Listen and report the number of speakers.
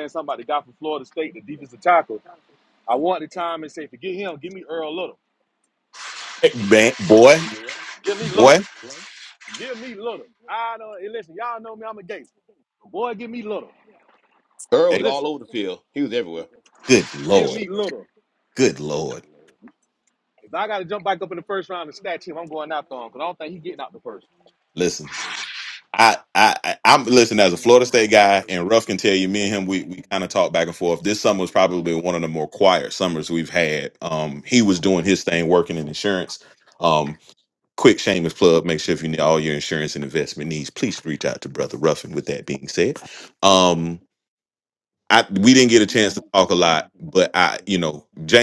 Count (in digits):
3